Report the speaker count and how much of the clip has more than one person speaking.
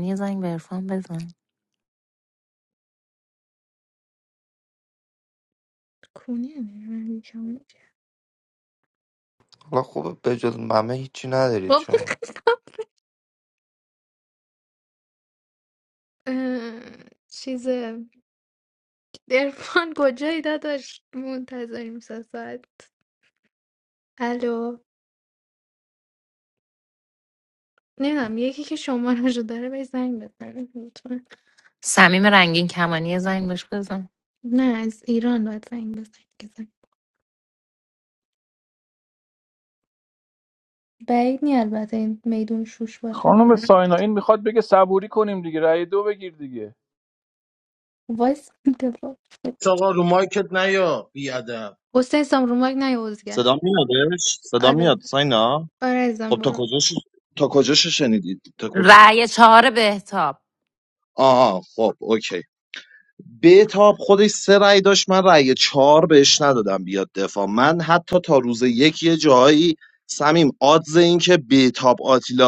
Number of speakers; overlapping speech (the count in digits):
6, about 2%